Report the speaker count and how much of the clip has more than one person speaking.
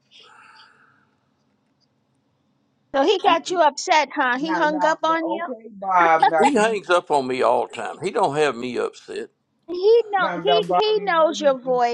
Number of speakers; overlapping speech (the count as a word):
three, about 26%